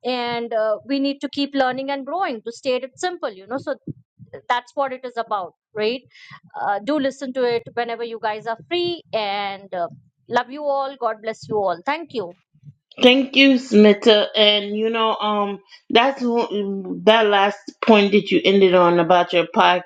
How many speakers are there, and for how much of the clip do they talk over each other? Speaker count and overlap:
2, no overlap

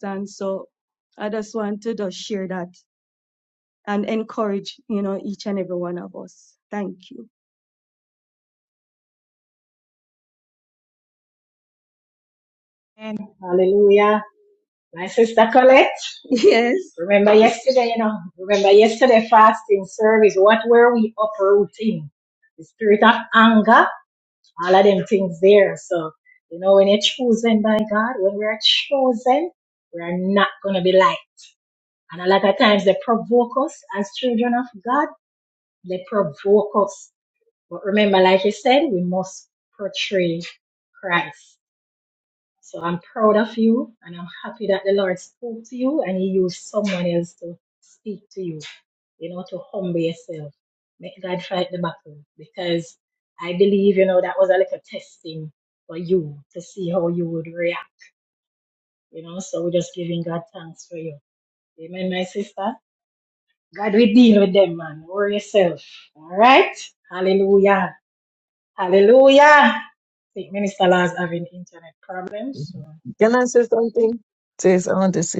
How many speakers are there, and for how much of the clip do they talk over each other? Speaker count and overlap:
3, no overlap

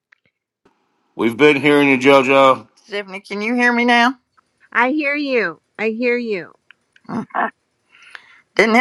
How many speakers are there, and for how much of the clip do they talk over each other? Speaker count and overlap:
3, no overlap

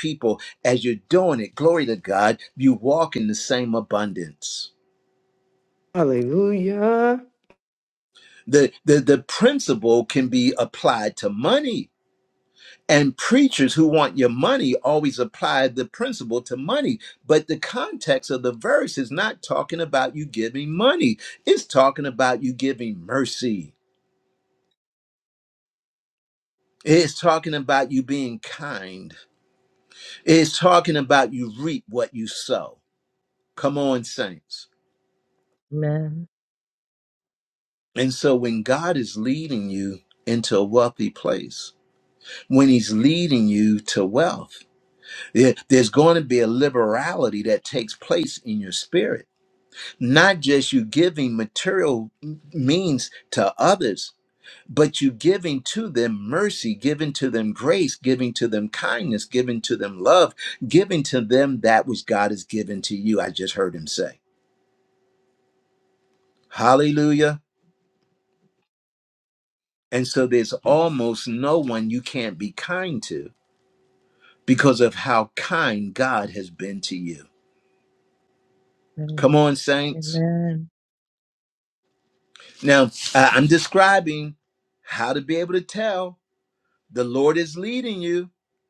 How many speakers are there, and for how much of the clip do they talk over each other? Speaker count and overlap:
3, under 1%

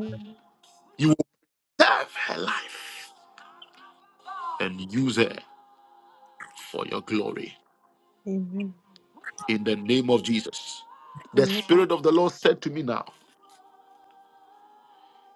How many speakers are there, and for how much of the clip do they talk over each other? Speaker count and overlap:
2, about 2%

